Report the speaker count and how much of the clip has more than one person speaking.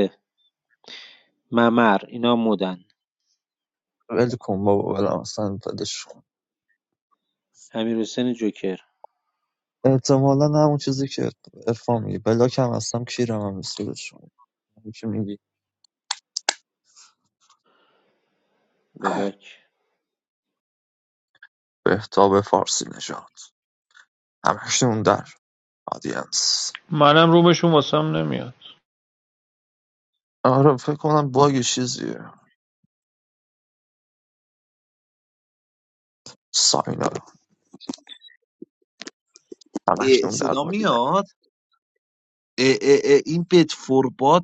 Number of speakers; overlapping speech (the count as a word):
four, about 2%